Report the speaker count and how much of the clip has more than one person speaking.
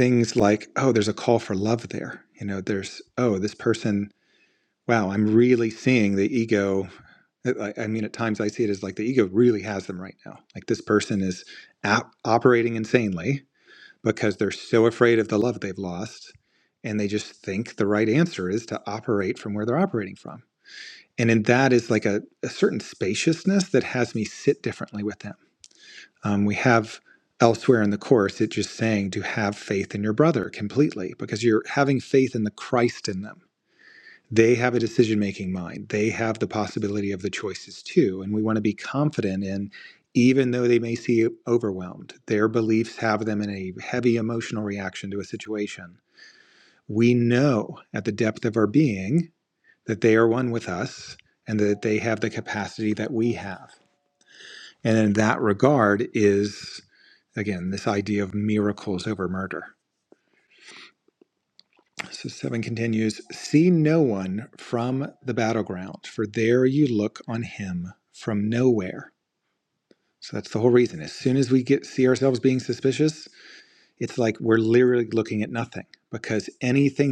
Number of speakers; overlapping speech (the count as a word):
one, no overlap